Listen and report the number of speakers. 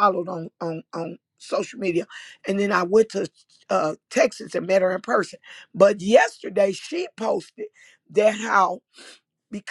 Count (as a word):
one